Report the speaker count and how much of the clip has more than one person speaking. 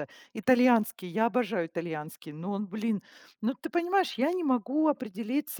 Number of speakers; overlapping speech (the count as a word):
one, no overlap